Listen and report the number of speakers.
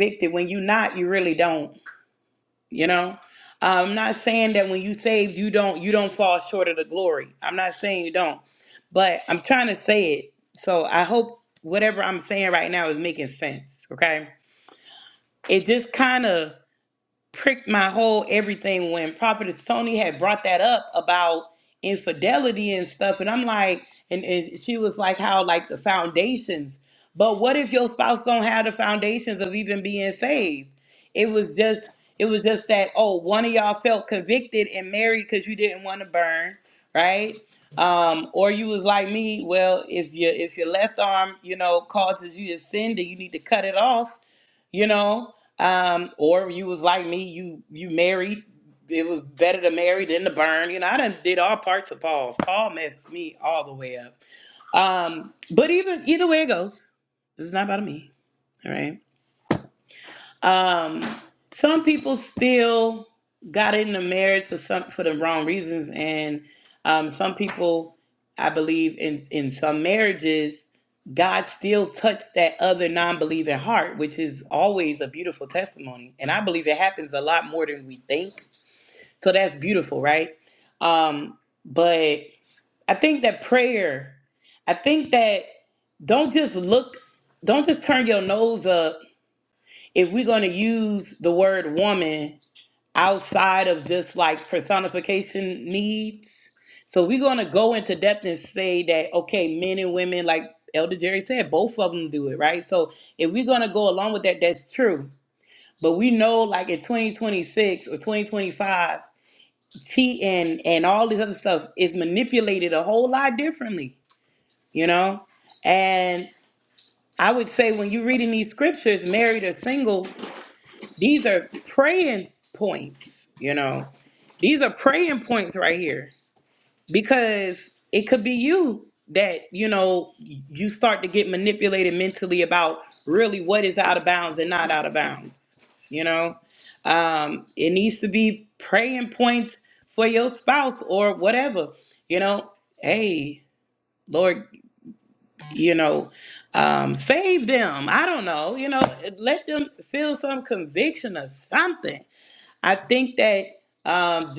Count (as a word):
one